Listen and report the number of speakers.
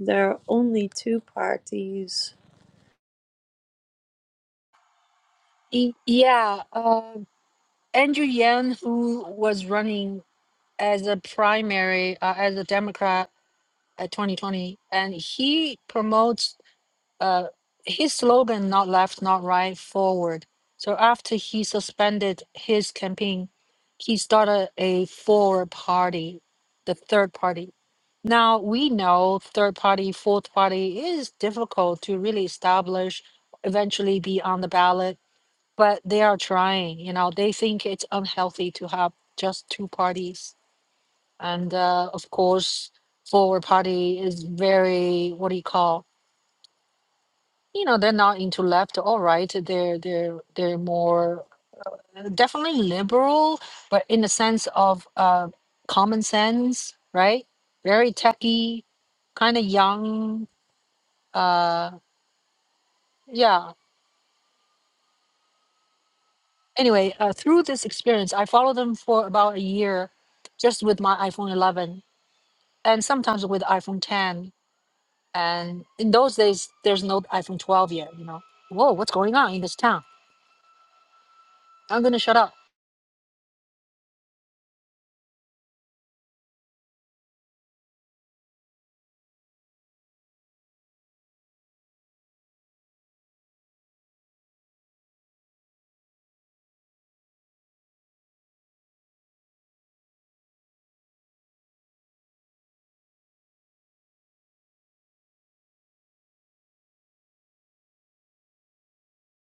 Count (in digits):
2